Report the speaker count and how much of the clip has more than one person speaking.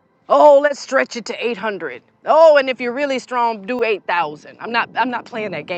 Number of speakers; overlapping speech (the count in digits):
1, no overlap